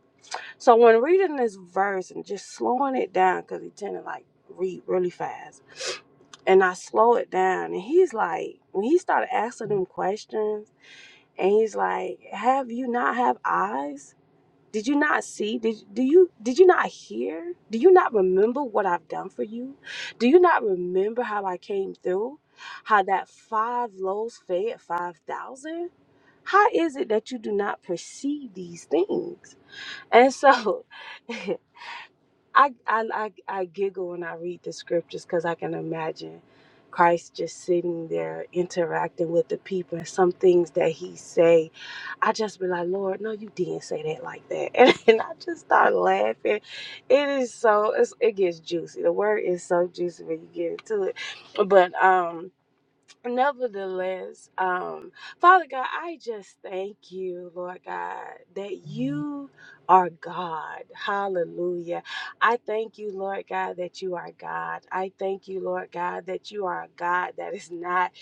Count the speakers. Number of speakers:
one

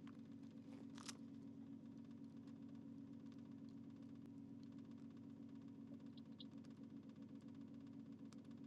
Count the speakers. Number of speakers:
zero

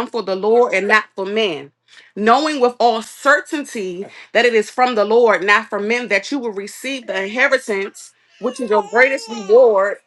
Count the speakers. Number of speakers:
one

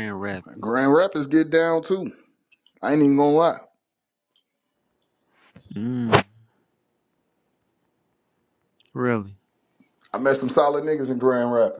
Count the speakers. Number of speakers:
two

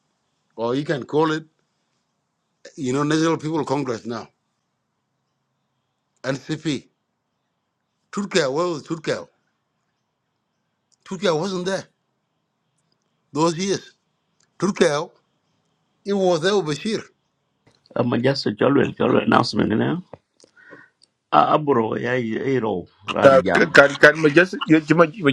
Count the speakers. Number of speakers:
three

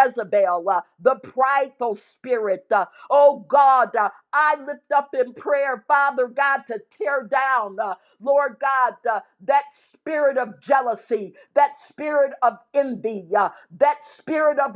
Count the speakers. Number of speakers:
one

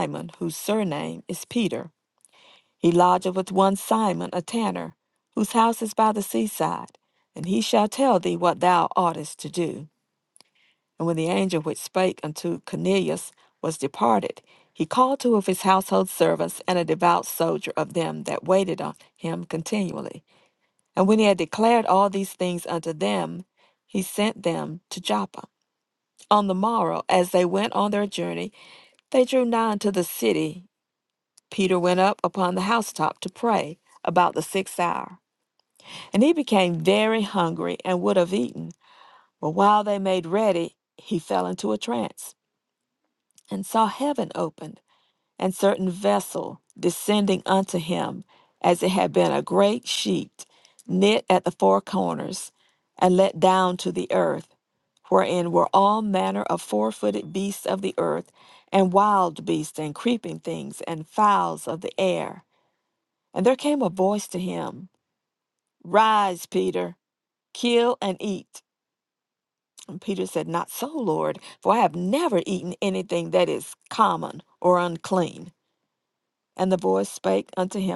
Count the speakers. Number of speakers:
one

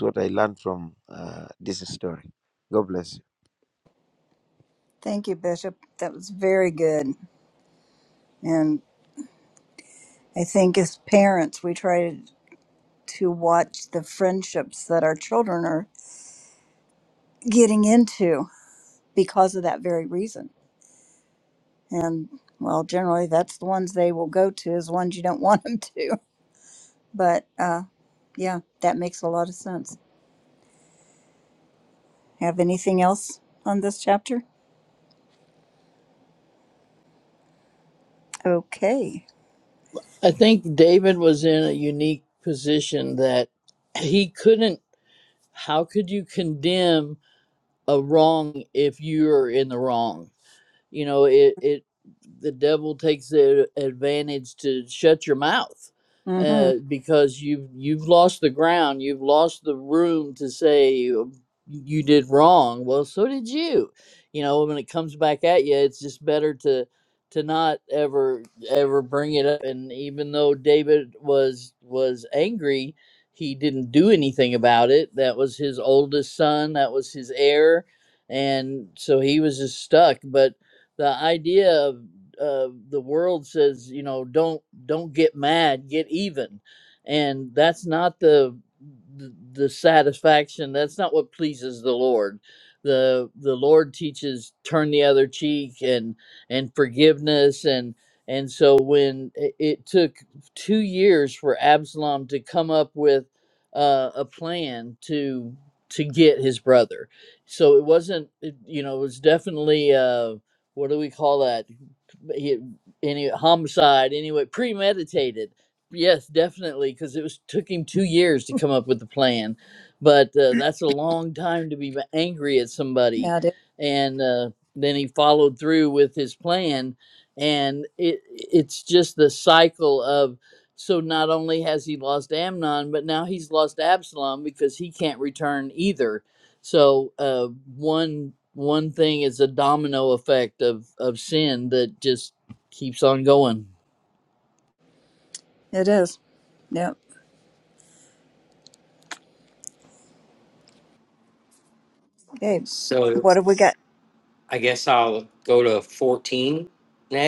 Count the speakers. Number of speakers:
four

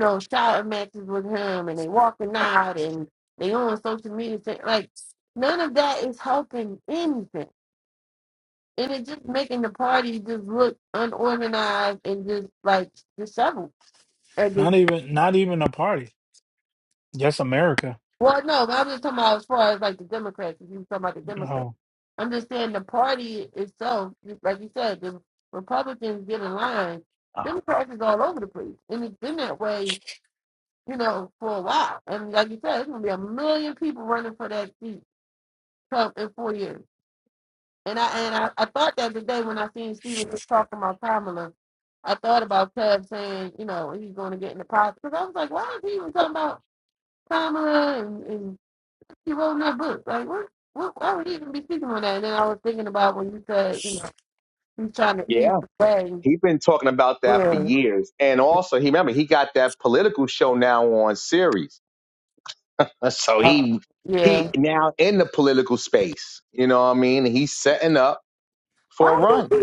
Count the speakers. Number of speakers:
three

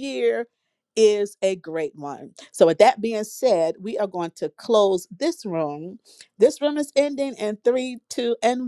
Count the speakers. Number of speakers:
one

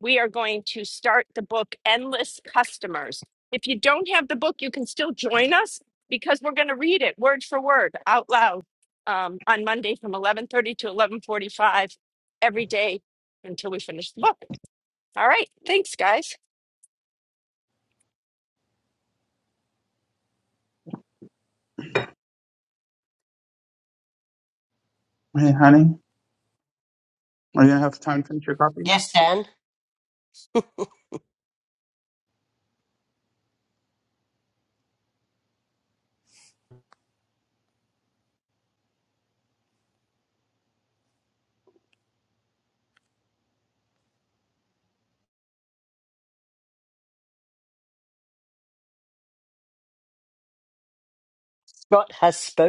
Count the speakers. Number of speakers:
three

